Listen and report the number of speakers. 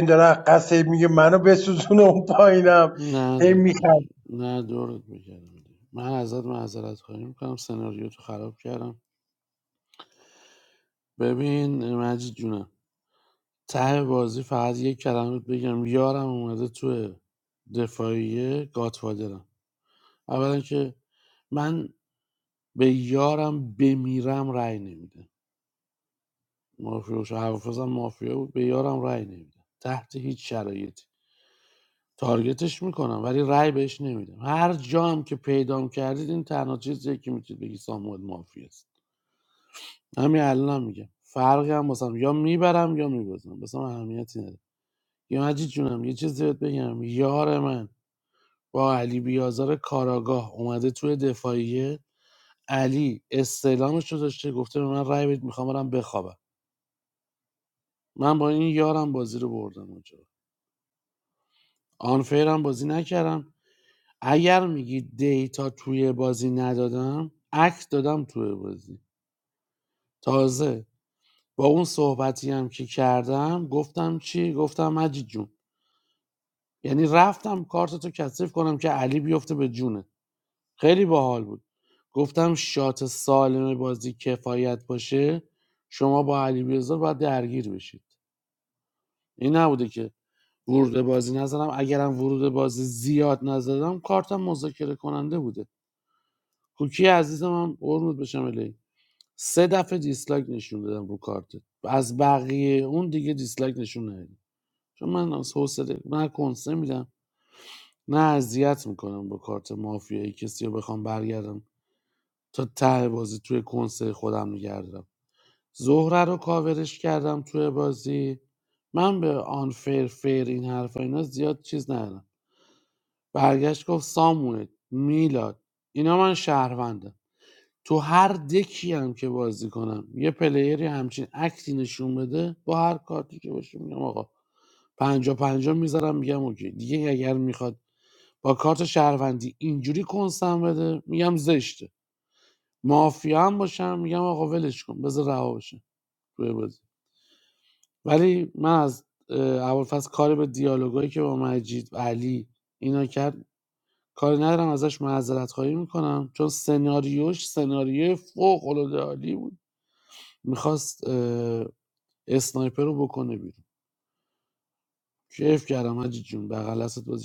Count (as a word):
two